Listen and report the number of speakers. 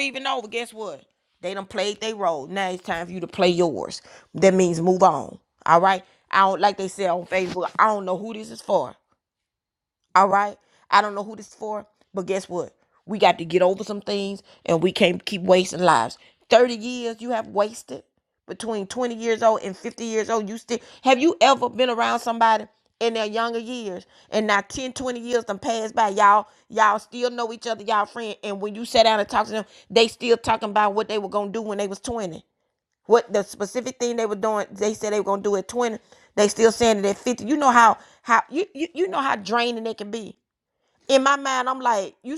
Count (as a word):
one